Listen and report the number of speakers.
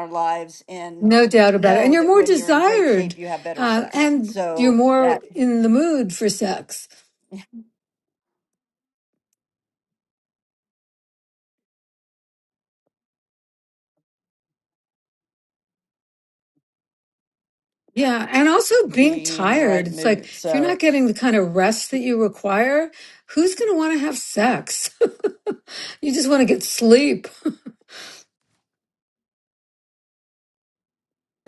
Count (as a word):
two